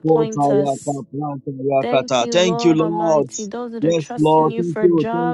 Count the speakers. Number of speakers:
two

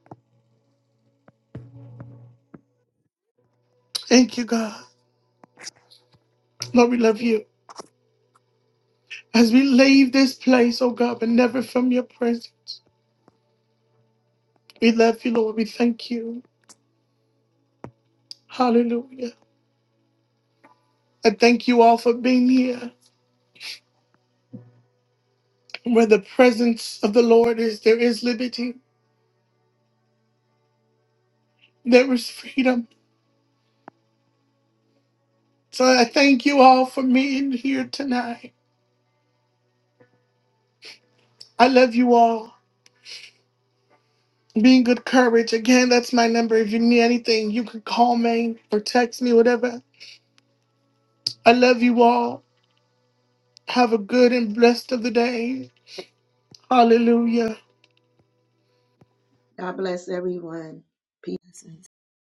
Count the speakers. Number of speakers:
two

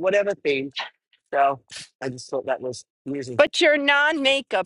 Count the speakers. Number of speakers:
two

